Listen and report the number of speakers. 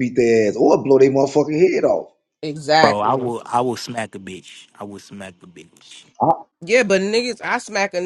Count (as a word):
three